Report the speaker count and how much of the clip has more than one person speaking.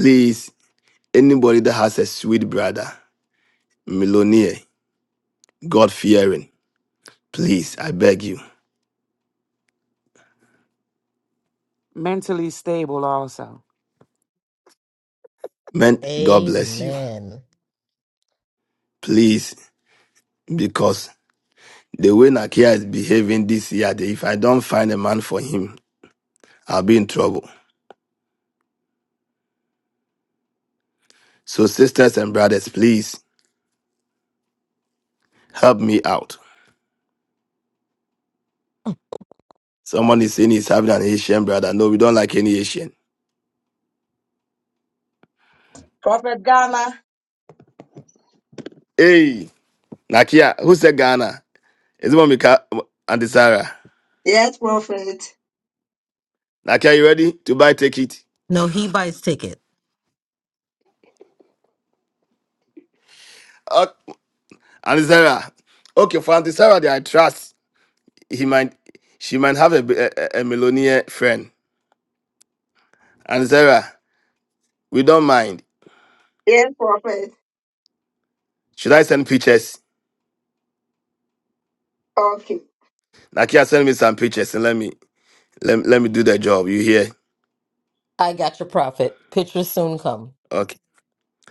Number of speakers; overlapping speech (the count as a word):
four, no overlap